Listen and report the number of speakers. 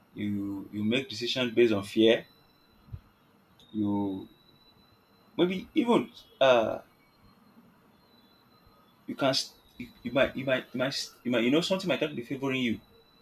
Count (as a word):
one